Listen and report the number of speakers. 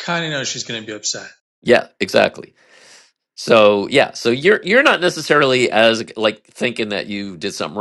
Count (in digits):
2